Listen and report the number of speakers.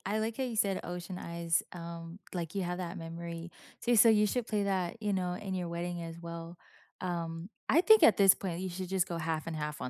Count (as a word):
one